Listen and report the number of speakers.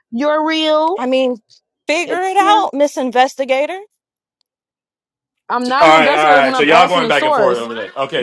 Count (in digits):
3